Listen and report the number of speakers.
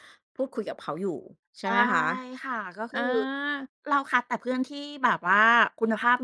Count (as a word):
two